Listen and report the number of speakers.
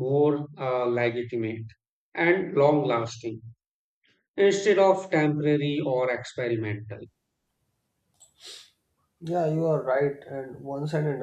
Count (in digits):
2